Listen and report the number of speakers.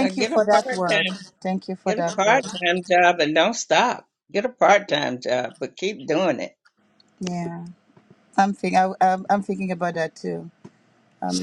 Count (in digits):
2